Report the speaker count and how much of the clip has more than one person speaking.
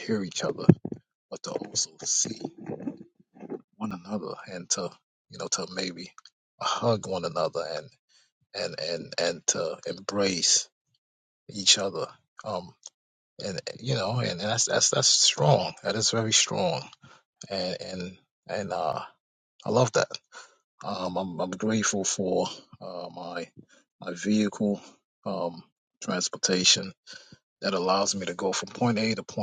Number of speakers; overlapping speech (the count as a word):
one, no overlap